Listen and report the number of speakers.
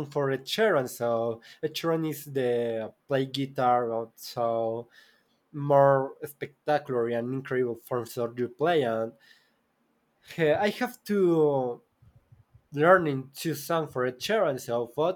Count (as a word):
one